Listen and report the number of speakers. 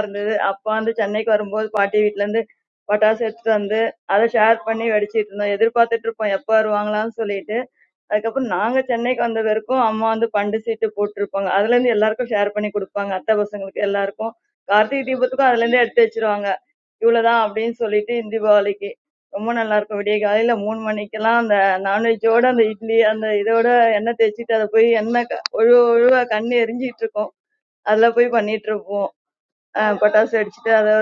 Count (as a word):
one